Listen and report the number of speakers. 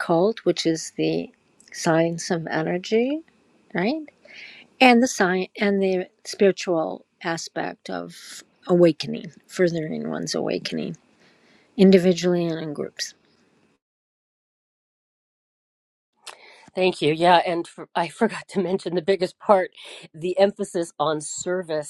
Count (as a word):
two